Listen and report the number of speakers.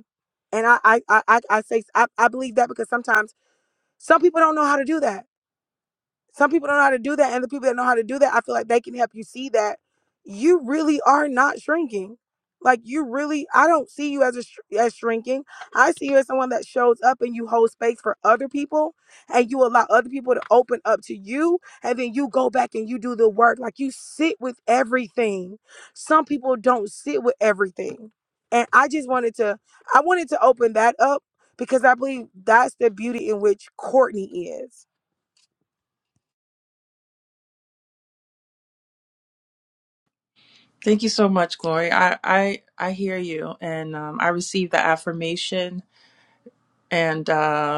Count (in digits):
2